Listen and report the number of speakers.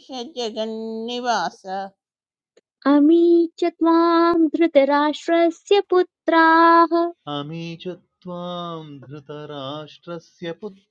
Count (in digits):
3